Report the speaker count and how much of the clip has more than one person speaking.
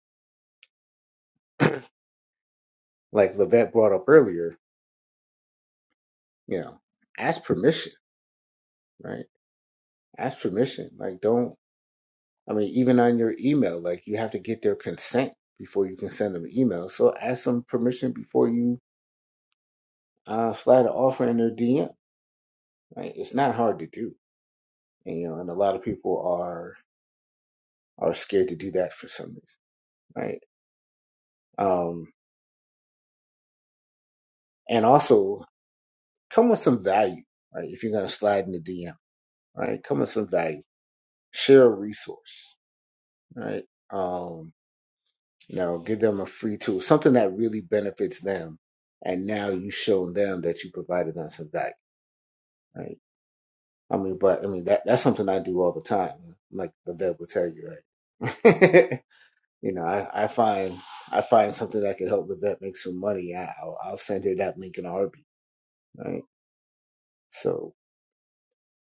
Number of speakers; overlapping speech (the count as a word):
one, no overlap